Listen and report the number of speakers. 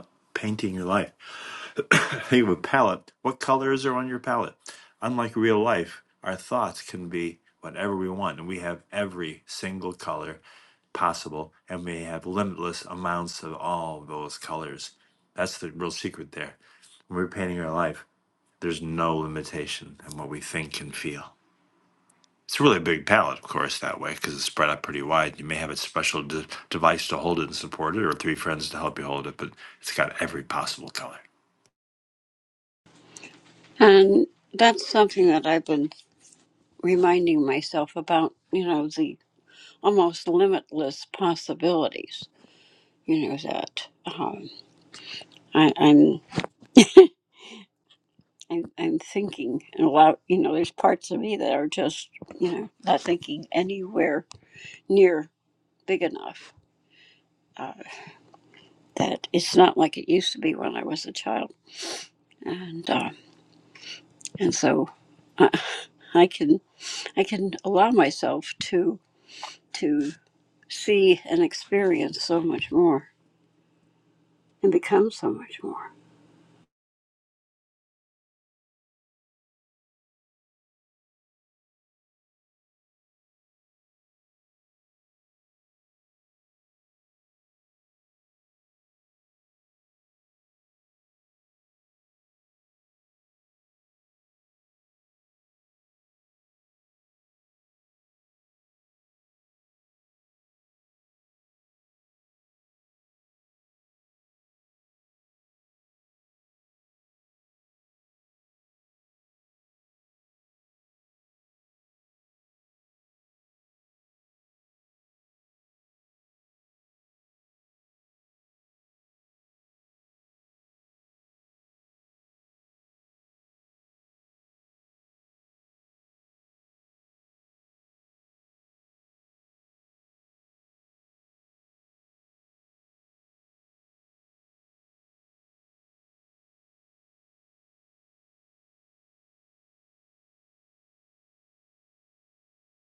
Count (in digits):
2